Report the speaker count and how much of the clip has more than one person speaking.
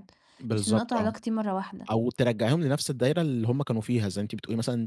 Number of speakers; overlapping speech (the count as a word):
two, about 12%